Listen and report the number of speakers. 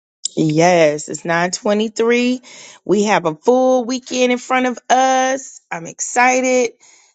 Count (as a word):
one